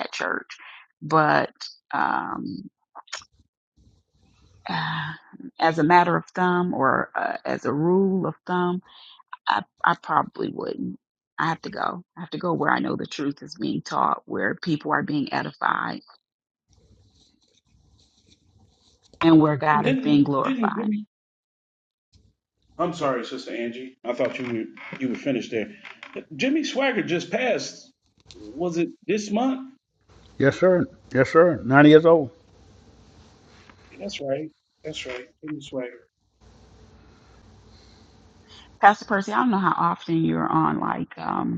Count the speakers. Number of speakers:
three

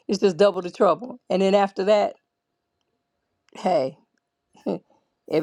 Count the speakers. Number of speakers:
one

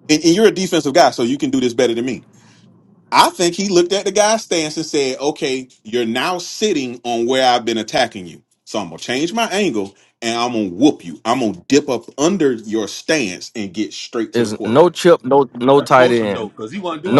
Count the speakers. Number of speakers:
three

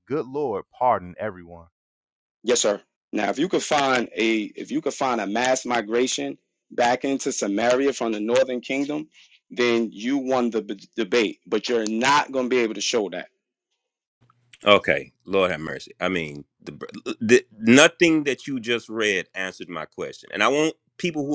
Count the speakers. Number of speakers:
three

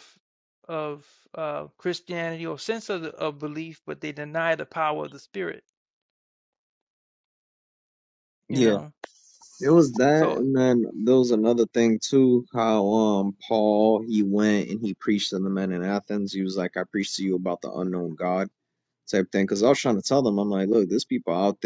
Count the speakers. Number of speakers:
two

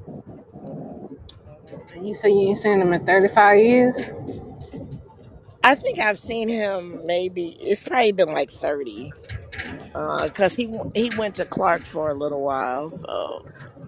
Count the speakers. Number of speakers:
two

